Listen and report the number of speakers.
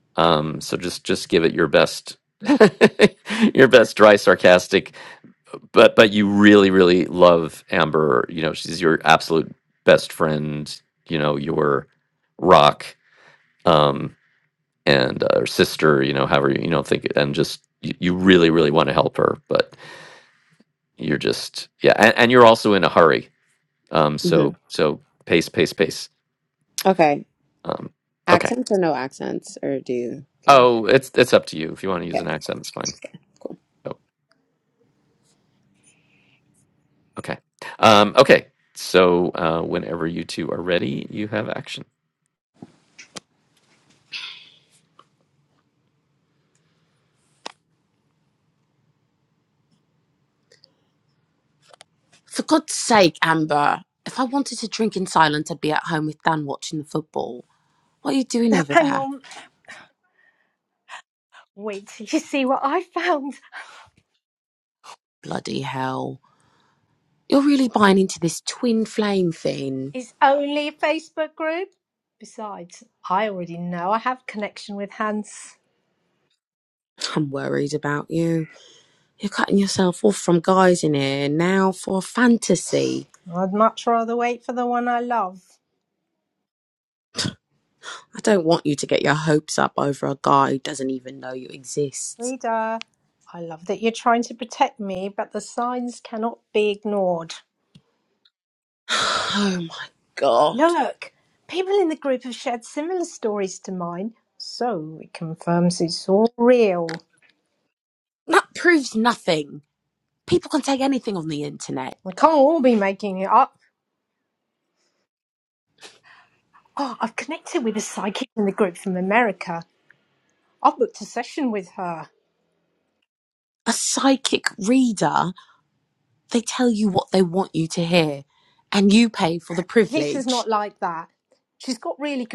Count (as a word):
three